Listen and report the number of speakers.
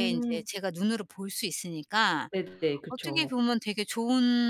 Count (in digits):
2